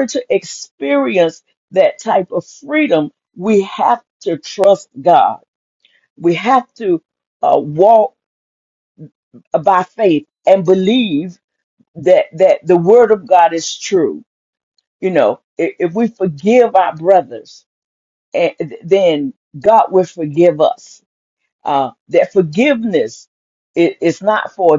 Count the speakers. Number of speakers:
one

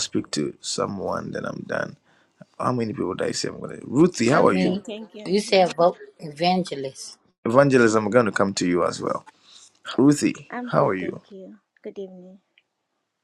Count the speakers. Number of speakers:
three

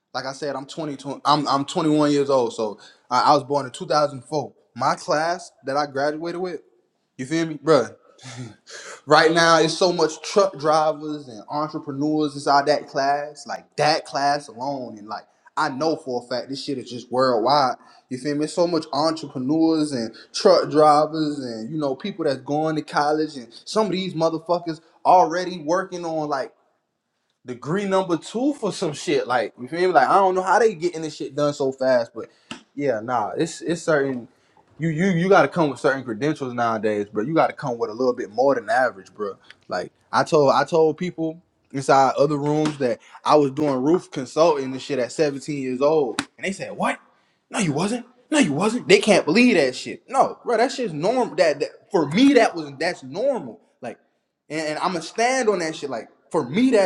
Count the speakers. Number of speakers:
one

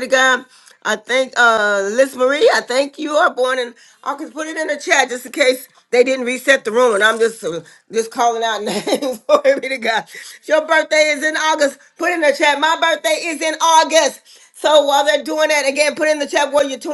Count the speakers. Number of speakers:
one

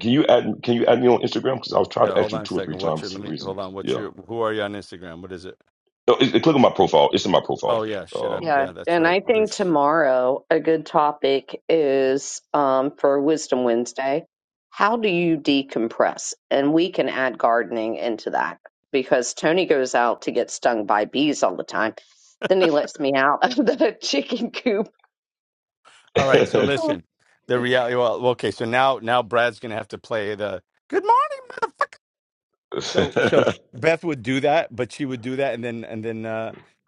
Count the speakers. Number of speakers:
three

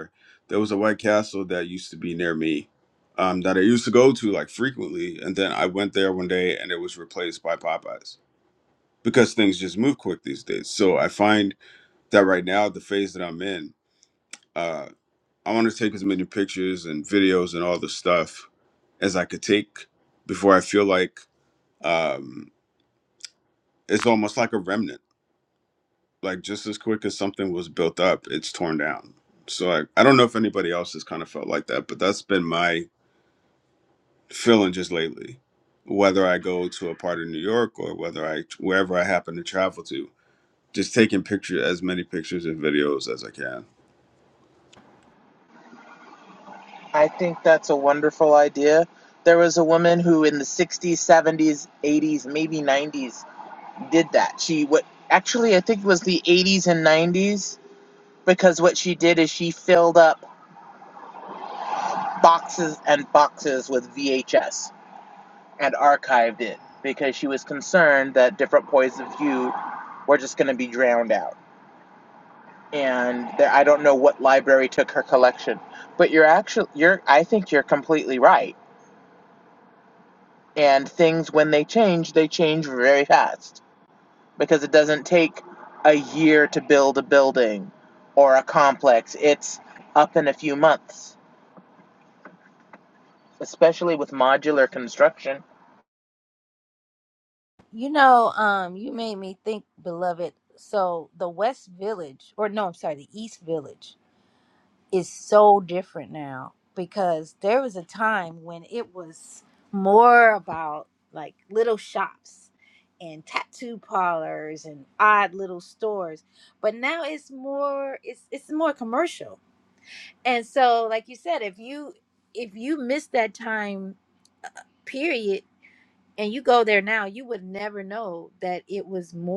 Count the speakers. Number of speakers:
three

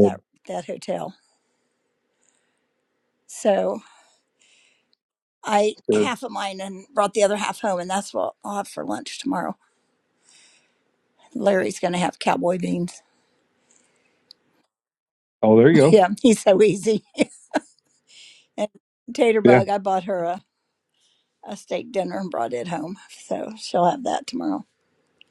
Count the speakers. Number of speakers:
two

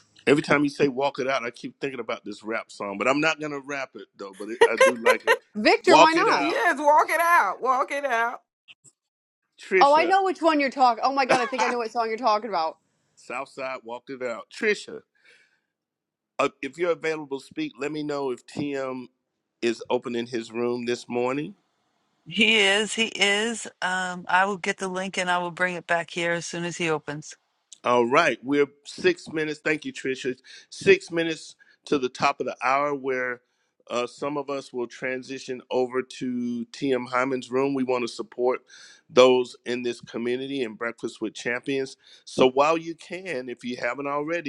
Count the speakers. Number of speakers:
four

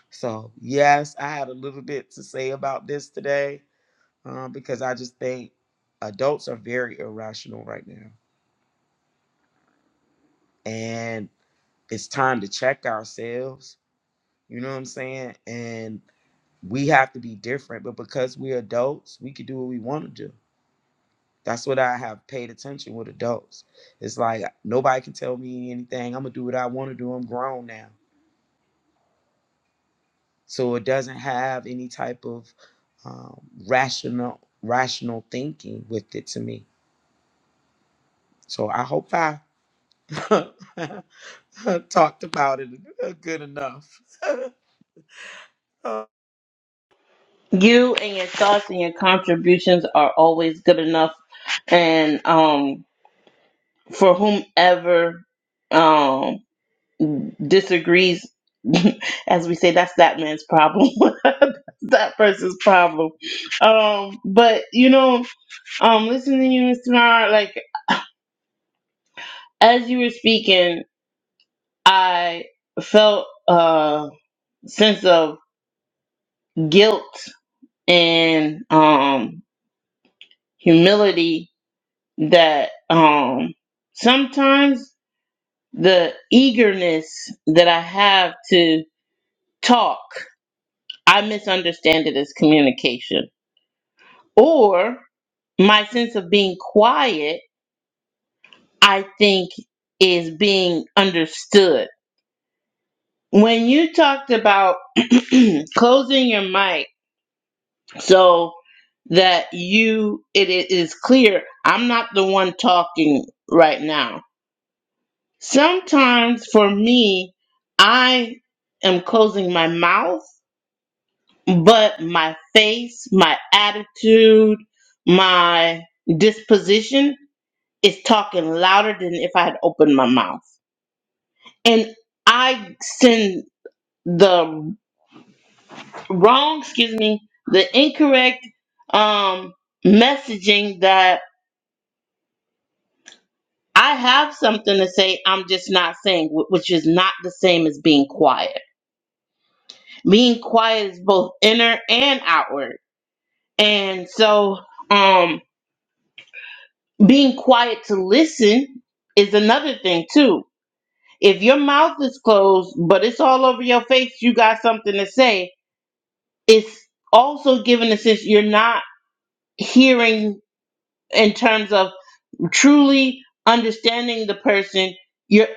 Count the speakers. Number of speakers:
two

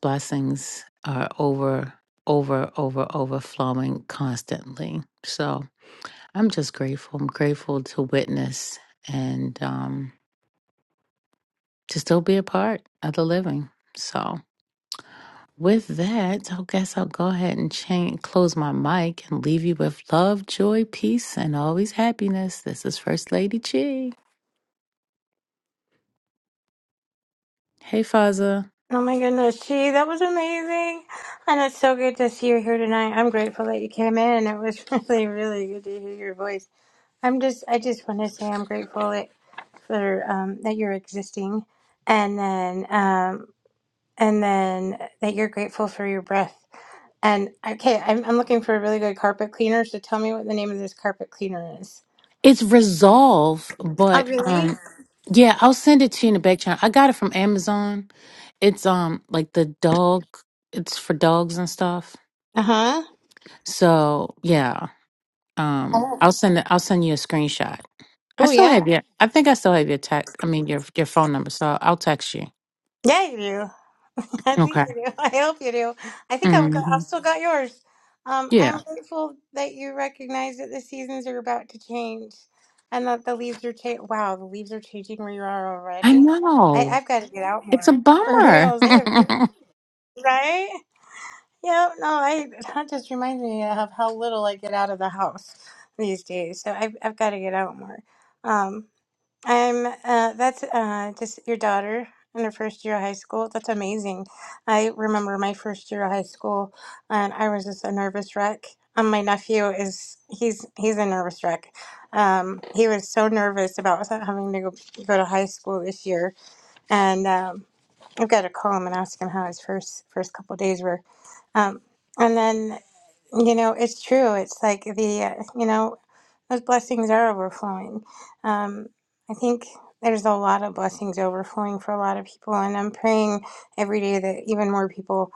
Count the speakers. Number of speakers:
two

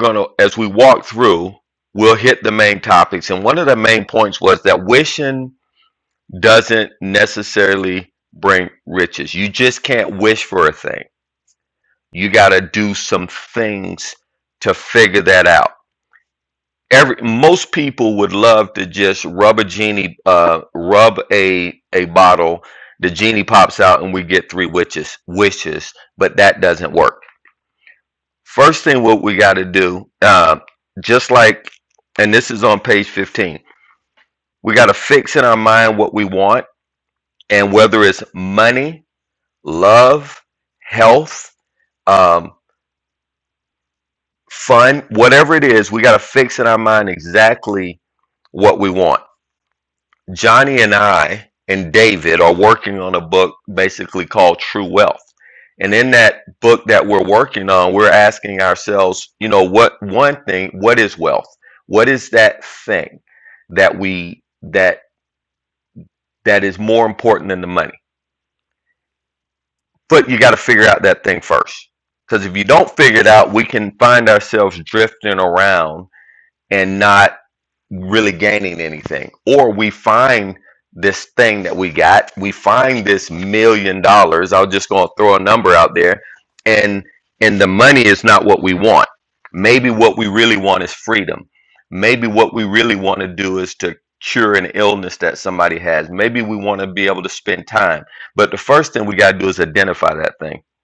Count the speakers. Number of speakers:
one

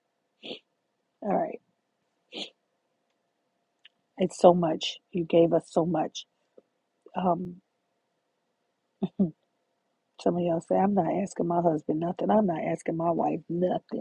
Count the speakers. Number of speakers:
one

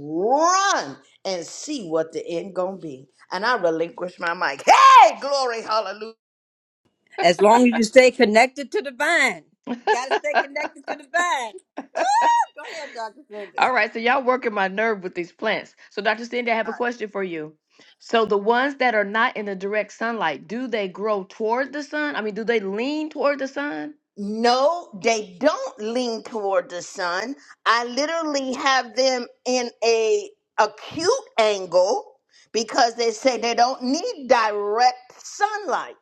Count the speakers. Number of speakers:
three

